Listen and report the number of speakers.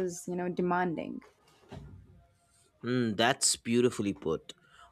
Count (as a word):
two